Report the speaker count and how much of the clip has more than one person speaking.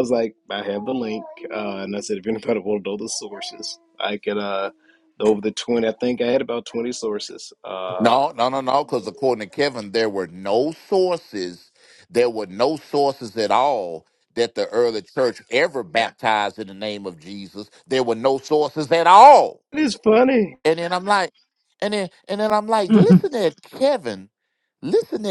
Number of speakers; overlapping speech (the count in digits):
2, about 1%